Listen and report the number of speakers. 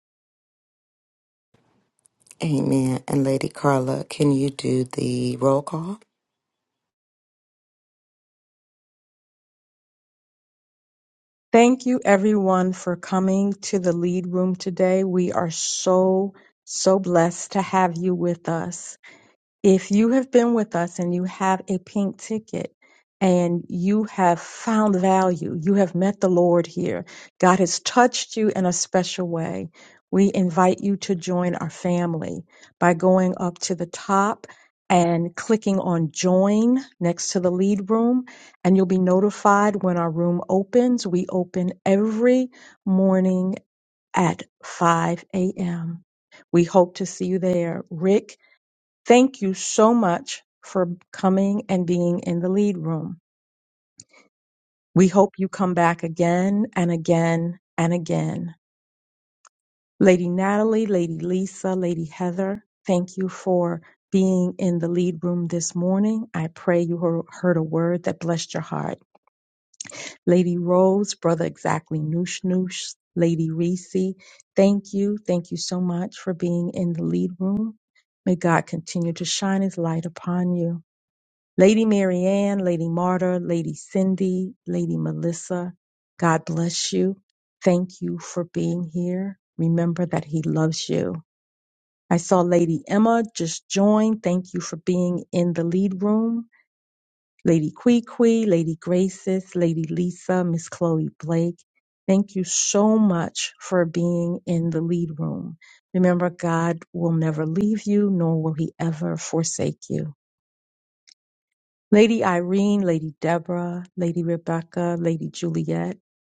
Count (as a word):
two